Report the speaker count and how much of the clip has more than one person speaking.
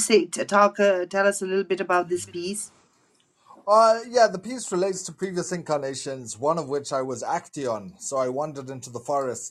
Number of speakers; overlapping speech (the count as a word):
two, no overlap